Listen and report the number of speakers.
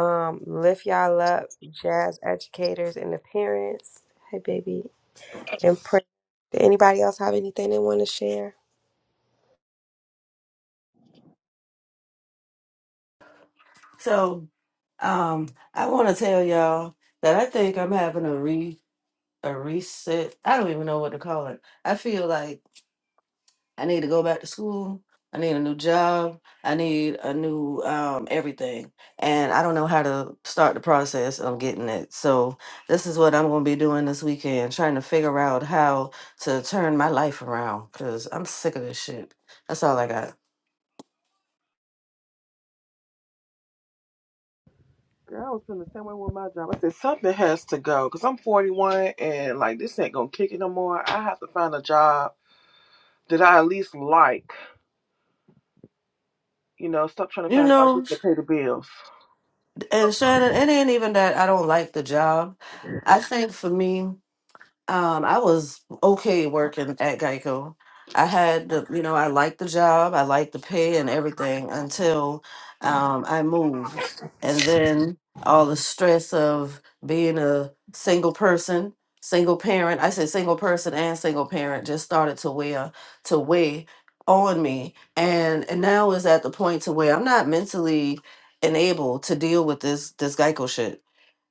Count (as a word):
three